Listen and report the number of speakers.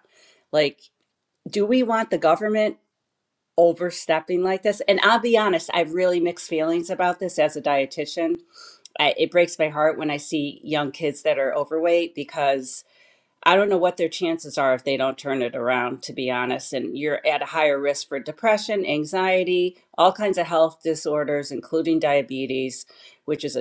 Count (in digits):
1